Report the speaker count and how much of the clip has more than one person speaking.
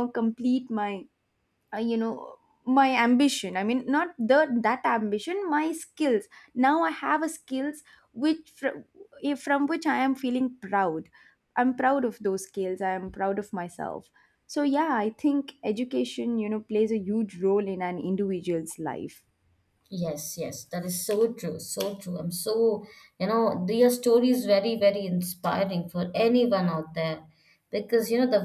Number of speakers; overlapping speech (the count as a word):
two, no overlap